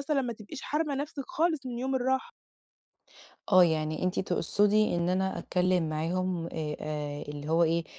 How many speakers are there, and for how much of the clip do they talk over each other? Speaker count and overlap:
two, no overlap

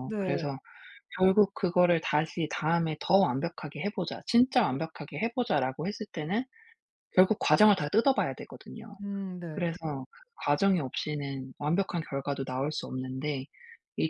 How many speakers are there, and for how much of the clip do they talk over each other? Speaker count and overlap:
two, about 3%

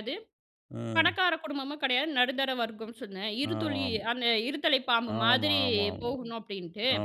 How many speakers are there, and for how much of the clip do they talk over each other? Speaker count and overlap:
two, about 22%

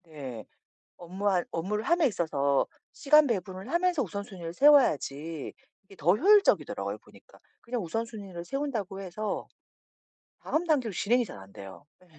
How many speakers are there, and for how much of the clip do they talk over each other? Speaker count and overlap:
one, no overlap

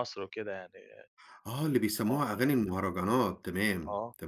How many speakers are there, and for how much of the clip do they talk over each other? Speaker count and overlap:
two, about 13%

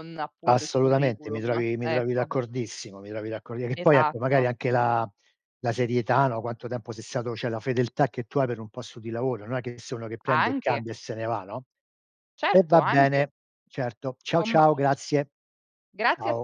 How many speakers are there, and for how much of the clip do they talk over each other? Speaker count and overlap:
two, about 24%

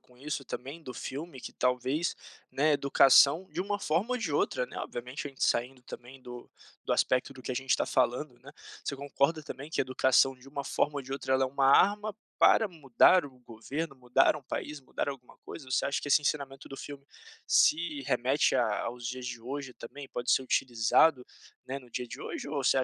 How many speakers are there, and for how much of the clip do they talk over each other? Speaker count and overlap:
one, no overlap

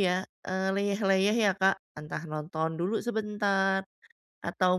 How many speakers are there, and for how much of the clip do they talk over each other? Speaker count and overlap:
one, no overlap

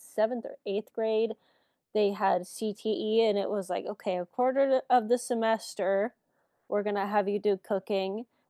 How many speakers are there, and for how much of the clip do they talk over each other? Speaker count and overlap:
one, no overlap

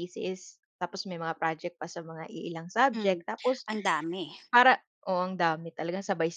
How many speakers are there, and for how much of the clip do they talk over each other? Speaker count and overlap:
two, about 5%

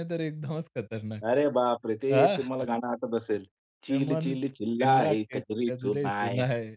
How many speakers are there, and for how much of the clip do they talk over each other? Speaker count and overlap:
two, about 37%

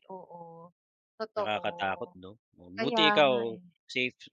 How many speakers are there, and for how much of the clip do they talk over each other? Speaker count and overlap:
two, about 21%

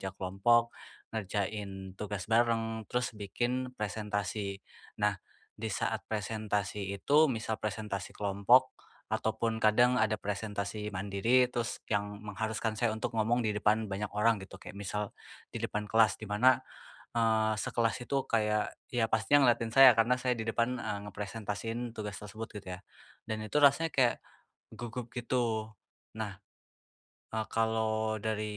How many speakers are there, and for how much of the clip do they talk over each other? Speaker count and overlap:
one, no overlap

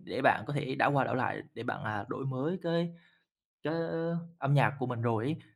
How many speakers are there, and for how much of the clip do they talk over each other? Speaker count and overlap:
one, no overlap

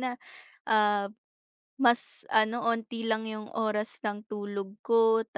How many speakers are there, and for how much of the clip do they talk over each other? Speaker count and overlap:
one, no overlap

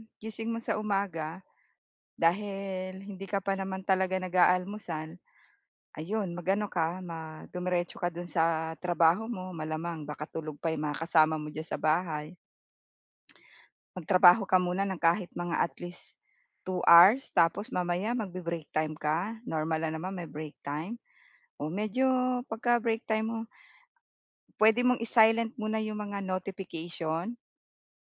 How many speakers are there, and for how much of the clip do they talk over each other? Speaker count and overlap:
one, no overlap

